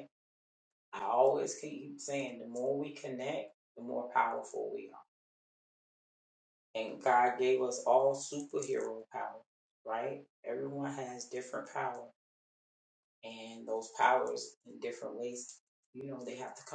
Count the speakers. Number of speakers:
one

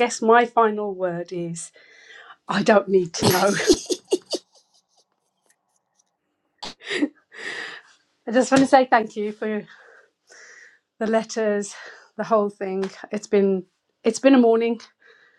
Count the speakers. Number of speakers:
one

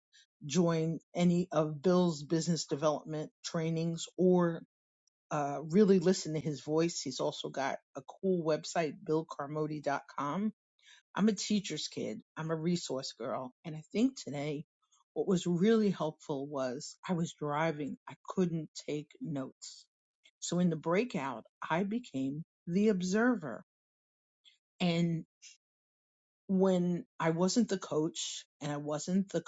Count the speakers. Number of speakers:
one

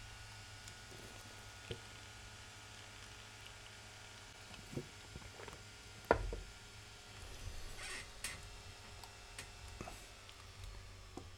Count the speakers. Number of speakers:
zero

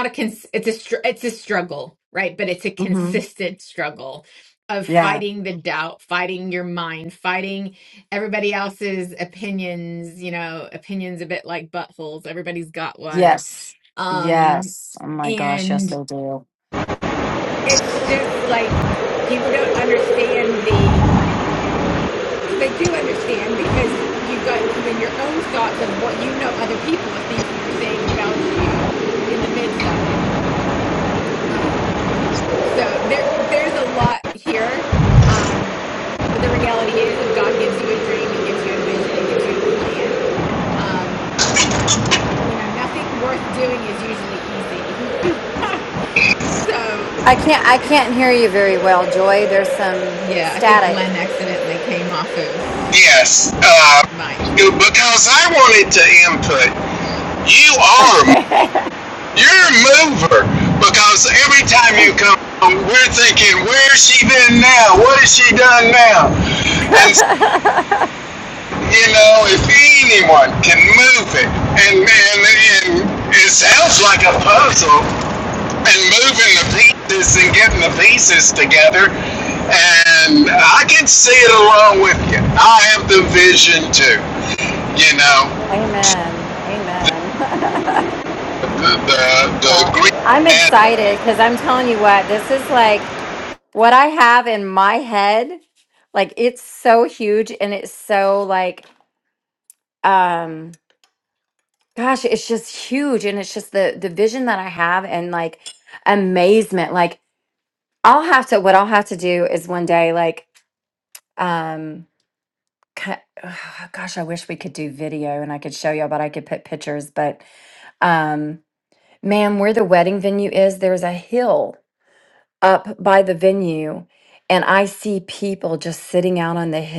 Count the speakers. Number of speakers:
three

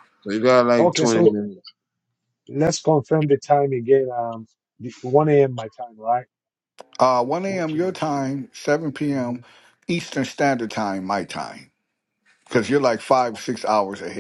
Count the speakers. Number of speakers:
three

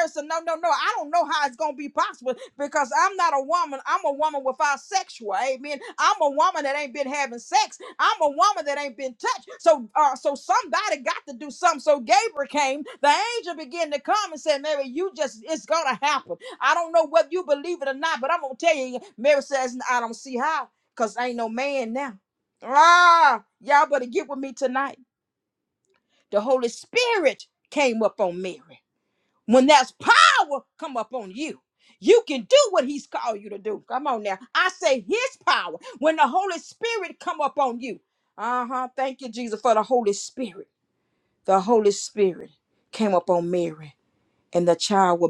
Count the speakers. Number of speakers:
one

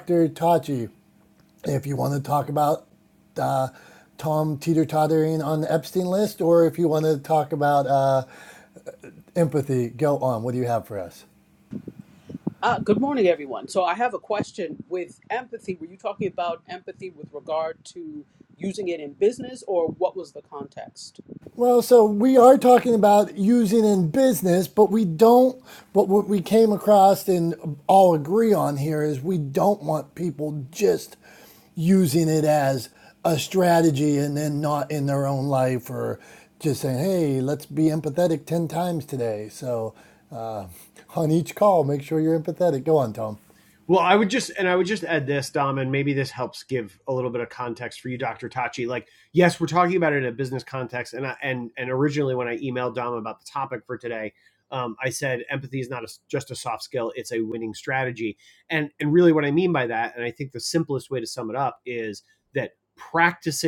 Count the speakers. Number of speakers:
three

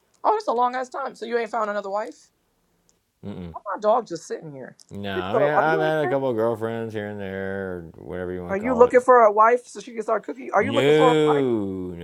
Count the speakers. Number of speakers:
two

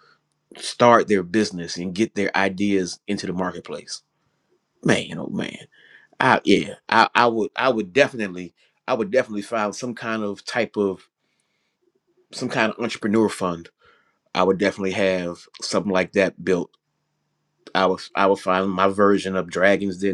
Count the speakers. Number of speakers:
one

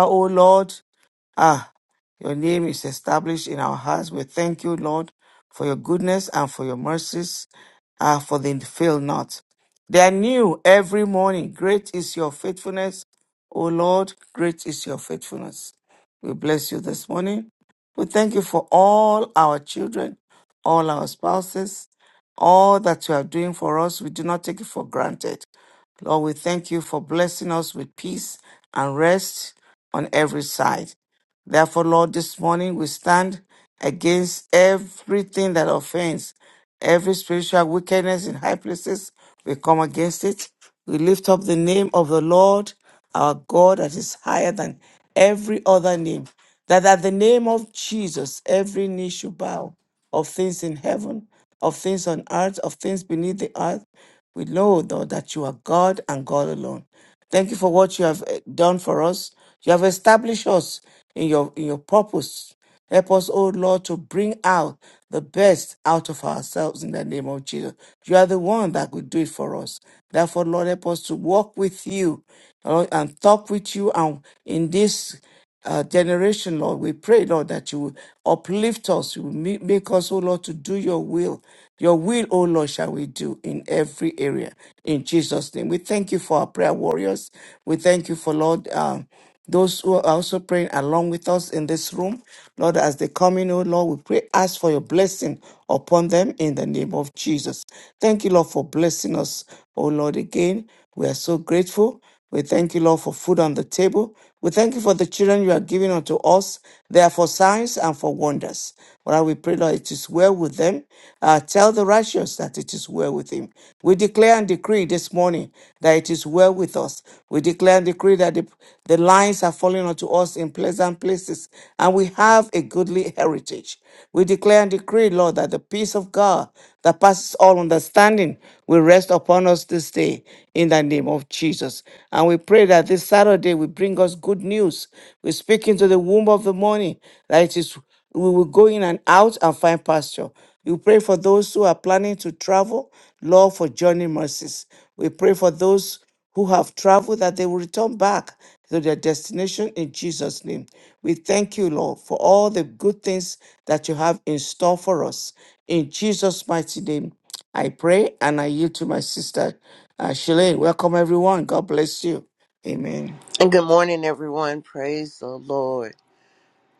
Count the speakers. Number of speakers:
two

